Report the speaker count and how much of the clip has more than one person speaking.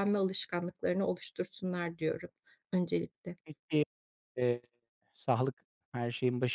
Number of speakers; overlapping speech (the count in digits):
2, no overlap